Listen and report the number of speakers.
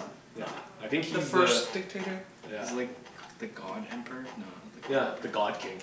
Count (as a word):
three